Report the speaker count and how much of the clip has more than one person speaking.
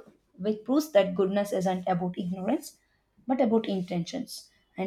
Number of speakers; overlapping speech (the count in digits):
1, no overlap